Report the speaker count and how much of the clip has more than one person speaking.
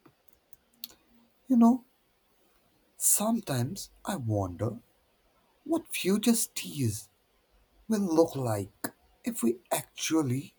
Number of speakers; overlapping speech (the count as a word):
one, no overlap